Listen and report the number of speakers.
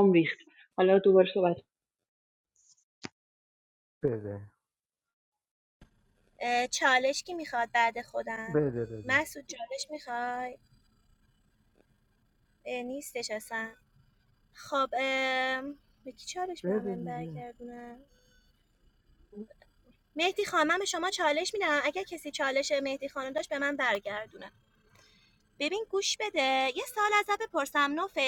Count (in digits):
3